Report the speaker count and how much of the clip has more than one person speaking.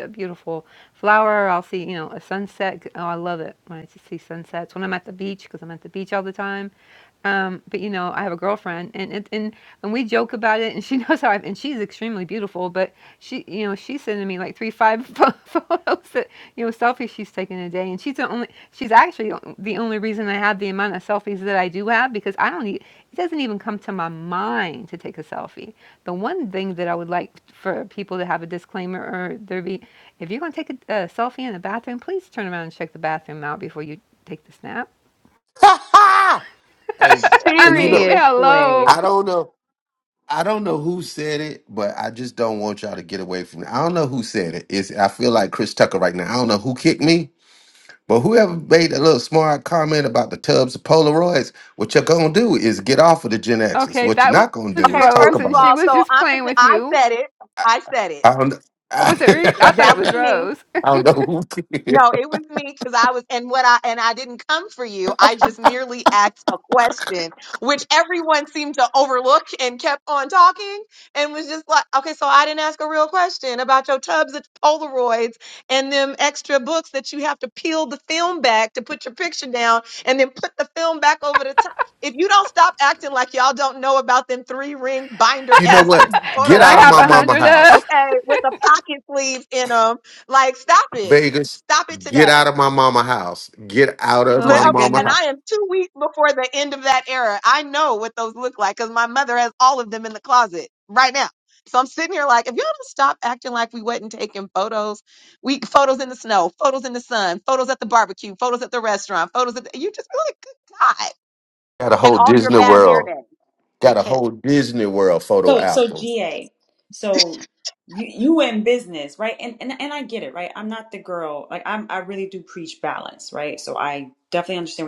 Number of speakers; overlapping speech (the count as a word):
four, about 8%